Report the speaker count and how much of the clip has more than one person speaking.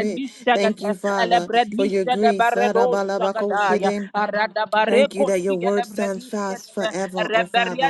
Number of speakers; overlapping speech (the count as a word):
two, about 80%